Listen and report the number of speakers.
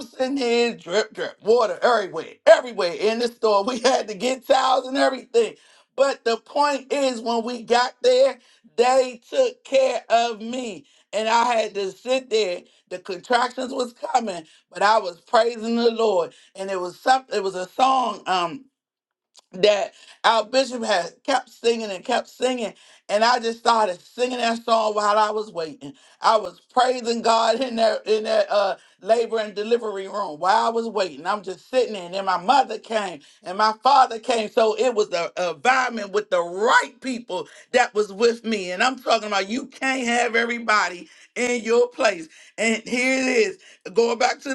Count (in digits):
1